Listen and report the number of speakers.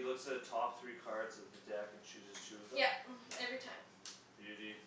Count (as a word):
two